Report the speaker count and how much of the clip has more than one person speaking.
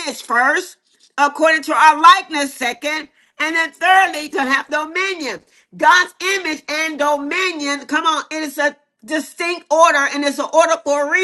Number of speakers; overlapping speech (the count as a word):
one, no overlap